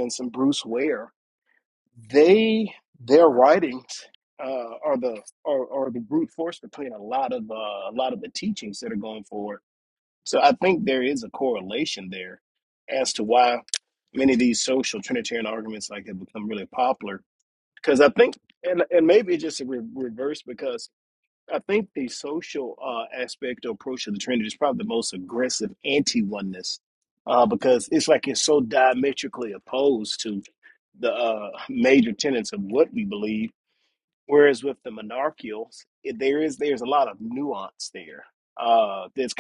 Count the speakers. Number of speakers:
one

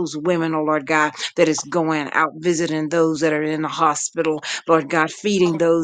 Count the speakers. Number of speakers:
one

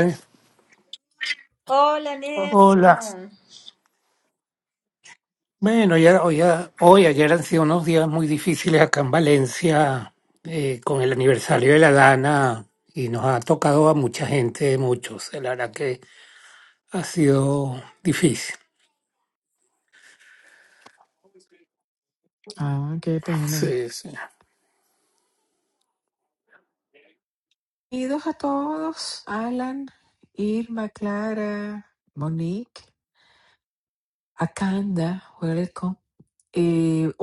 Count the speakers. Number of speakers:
three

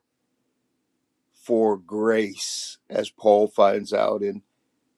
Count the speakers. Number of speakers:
one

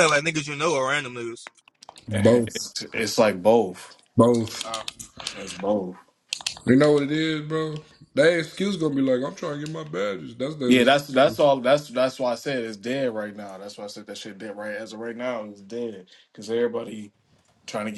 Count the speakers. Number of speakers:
three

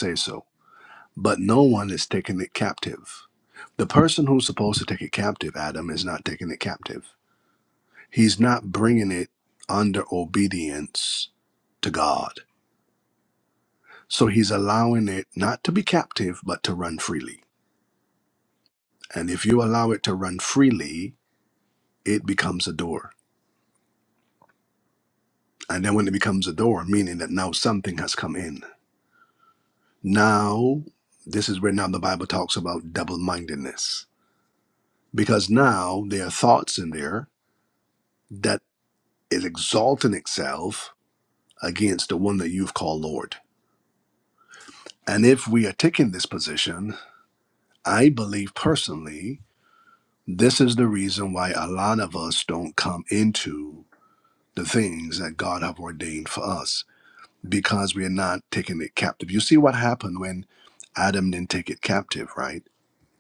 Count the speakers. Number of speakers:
one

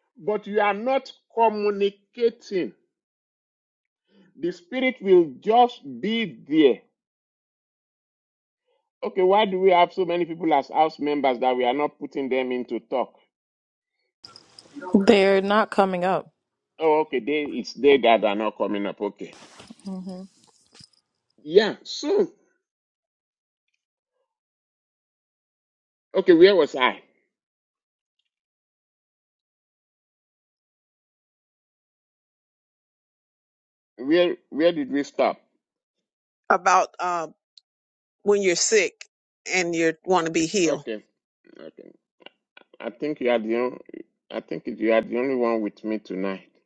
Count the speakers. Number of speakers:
three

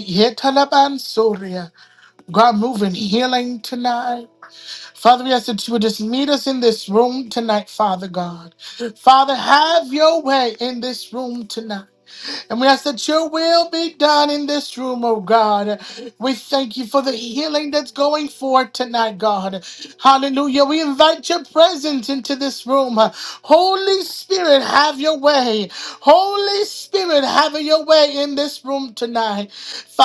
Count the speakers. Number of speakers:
one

